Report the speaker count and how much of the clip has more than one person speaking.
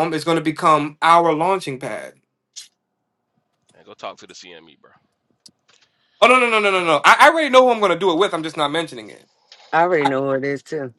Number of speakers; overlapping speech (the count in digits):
3, about 1%